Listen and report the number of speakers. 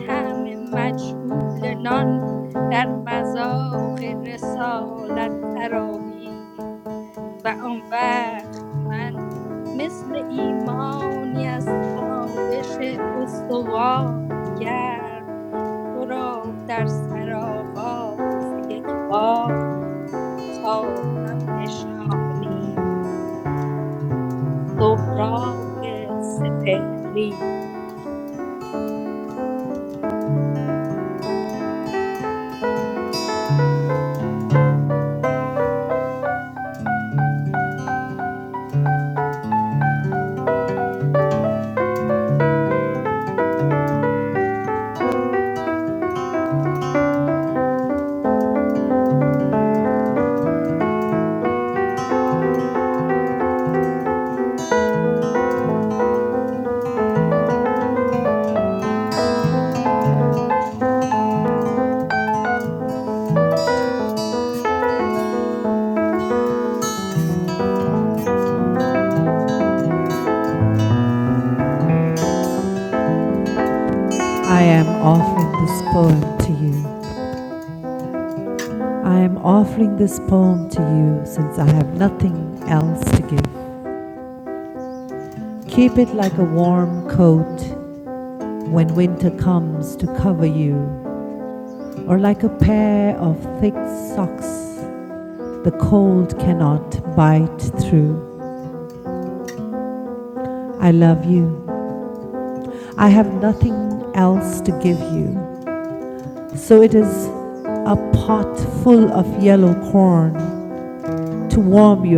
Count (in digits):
2